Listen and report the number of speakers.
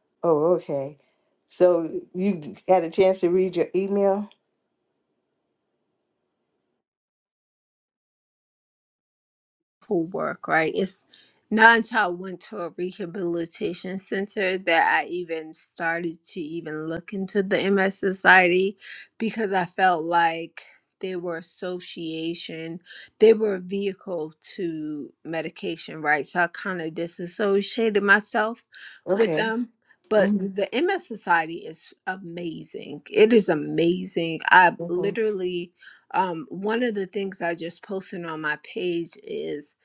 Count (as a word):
two